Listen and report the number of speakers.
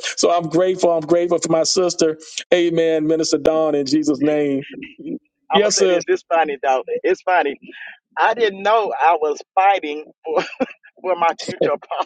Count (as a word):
two